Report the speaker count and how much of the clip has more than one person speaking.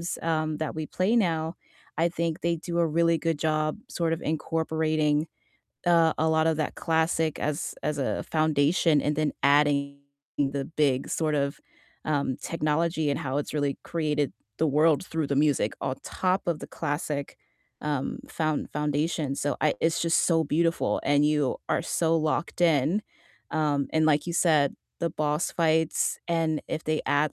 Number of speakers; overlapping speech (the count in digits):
1, no overlap